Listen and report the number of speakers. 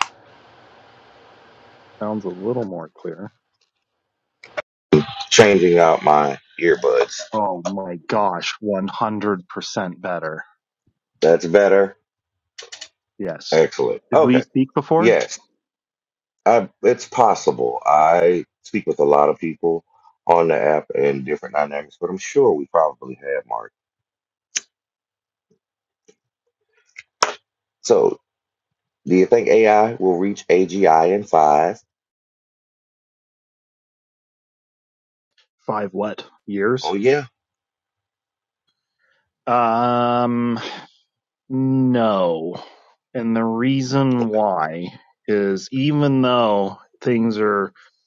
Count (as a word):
two